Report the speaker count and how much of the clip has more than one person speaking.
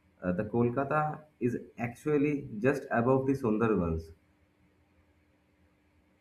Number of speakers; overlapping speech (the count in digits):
1, no overlap